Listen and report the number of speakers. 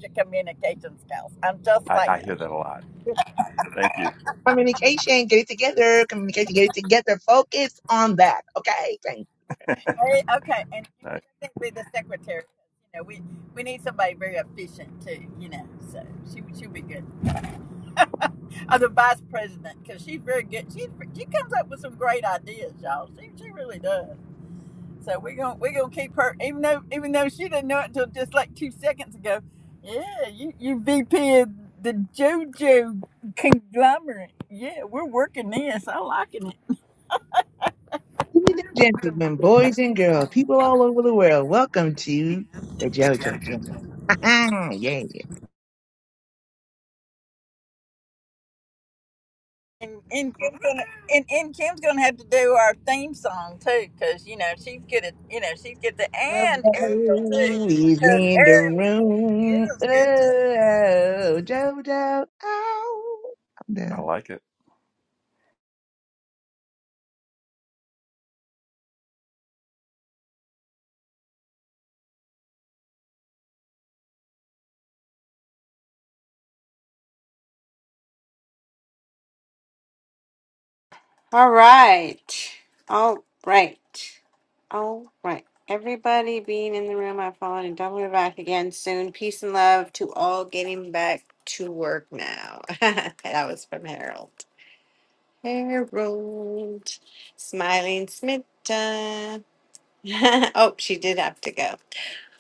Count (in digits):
4